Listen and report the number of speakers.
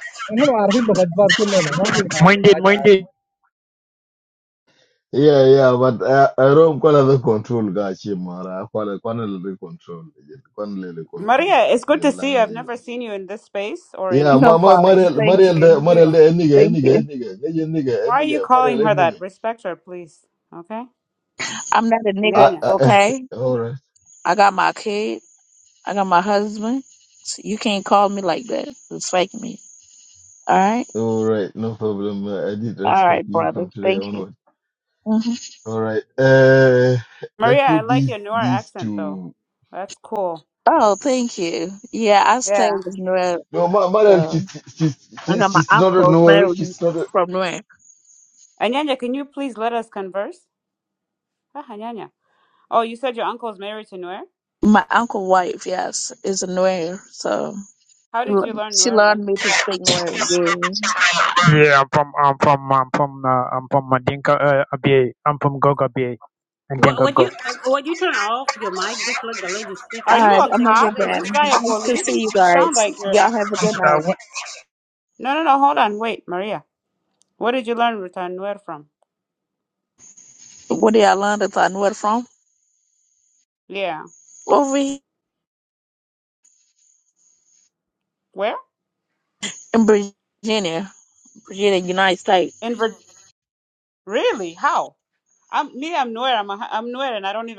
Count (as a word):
six